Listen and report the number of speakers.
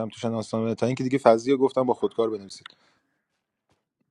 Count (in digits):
1